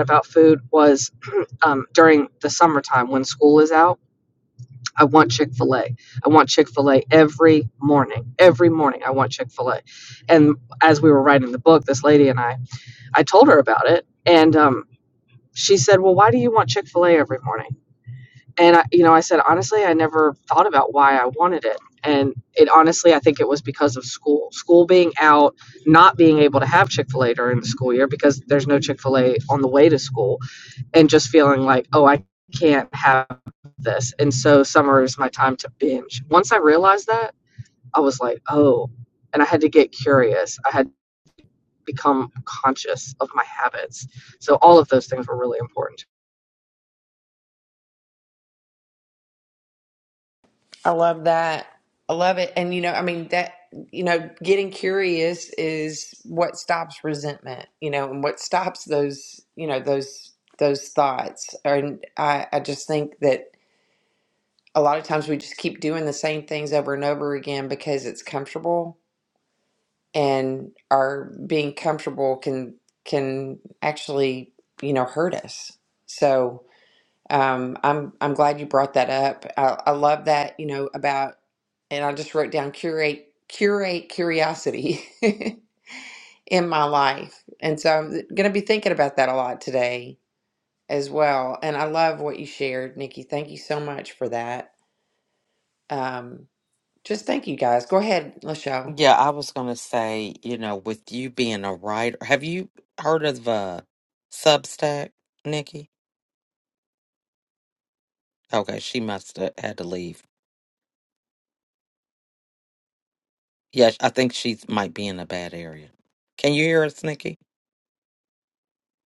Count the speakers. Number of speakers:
three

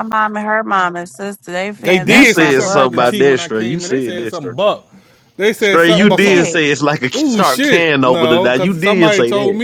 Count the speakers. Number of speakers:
three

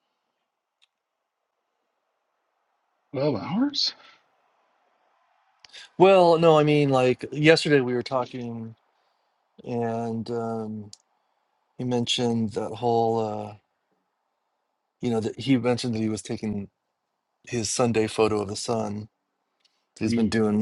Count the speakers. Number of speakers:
two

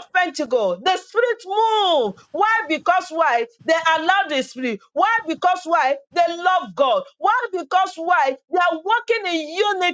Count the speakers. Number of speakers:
one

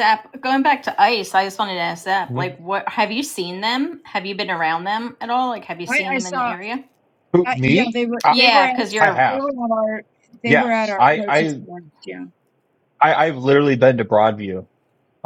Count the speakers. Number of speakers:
three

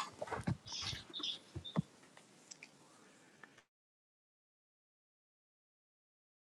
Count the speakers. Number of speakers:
zero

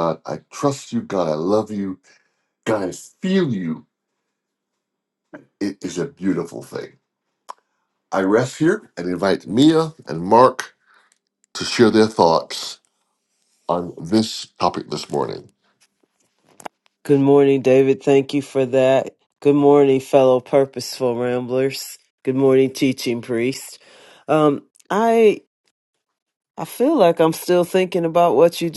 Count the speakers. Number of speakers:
two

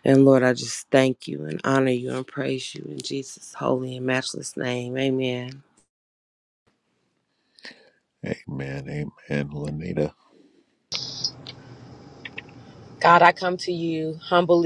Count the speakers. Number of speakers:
three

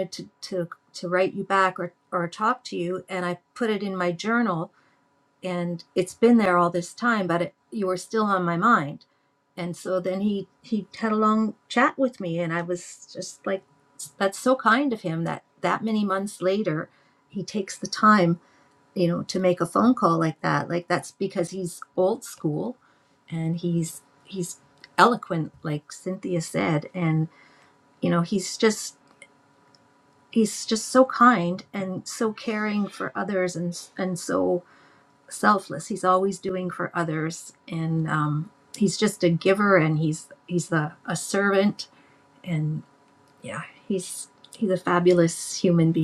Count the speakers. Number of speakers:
one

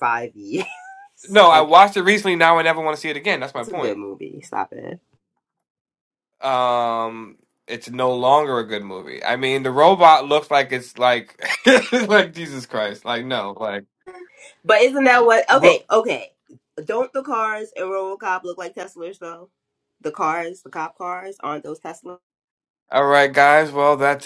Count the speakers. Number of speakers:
two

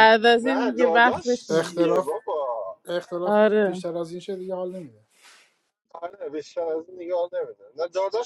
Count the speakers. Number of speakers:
three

